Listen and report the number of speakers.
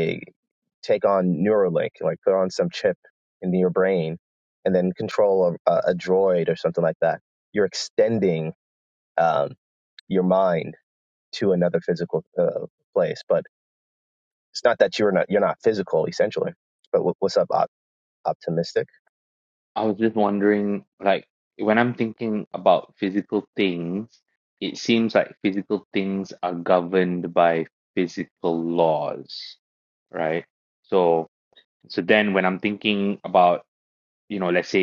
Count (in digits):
2